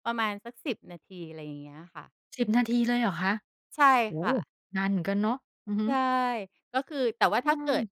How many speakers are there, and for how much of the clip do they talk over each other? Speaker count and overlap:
two, about 8%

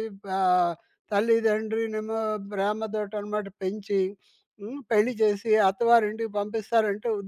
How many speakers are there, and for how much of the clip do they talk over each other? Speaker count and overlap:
one, no overlap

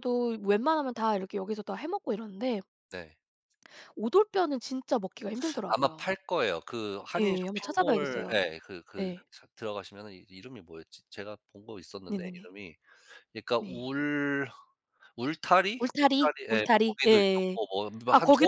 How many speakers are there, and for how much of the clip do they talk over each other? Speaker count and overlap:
two, about 23%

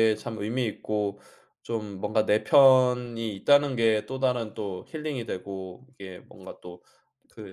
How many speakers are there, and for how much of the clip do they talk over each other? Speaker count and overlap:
one, no overlap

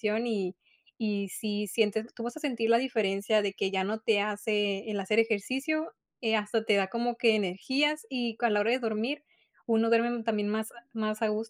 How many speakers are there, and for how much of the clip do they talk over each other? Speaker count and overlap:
one, no overlap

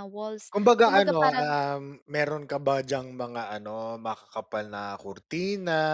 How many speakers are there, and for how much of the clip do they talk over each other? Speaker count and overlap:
two, about 17%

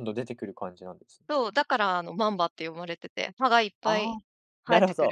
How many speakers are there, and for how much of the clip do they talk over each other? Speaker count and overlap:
two, about 15%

